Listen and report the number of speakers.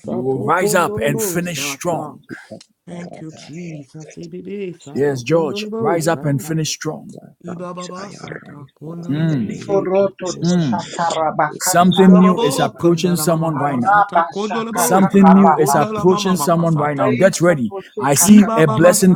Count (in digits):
3